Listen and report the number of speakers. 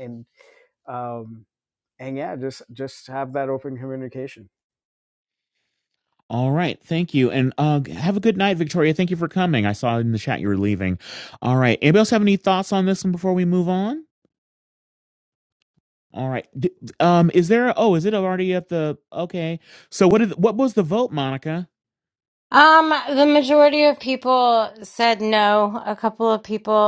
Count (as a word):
three